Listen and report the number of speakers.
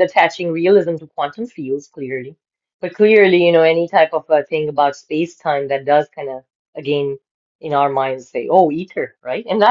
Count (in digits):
1